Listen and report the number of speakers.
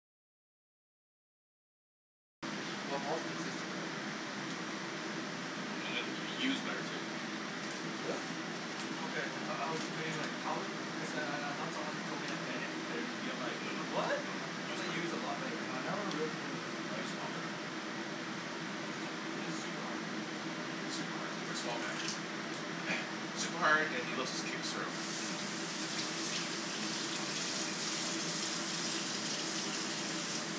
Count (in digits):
3